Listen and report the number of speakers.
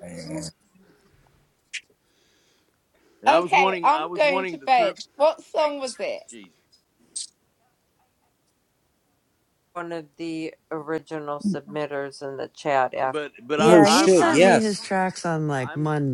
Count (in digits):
5